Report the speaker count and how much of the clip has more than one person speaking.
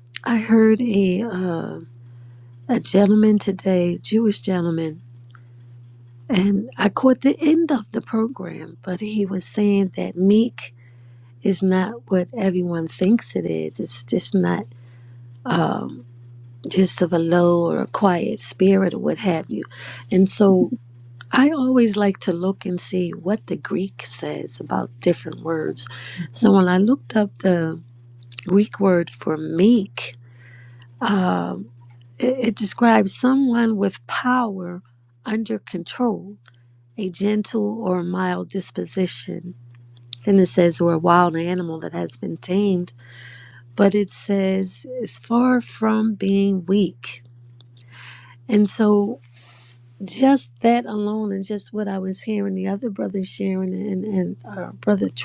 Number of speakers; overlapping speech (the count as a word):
one, no overlap